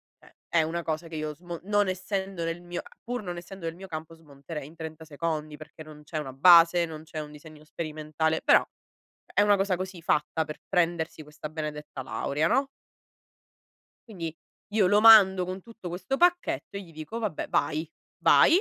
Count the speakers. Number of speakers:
one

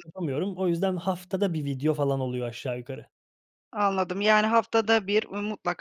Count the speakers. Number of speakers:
two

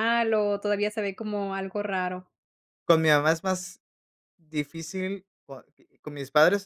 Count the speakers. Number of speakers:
two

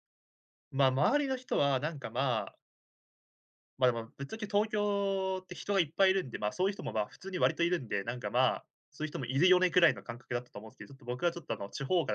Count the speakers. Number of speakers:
one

